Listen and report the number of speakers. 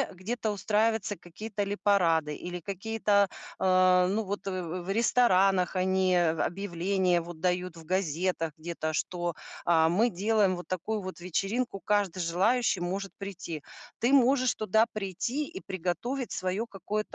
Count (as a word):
one